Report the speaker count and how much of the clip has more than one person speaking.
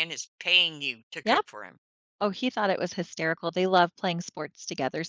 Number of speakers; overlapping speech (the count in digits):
2, about 4%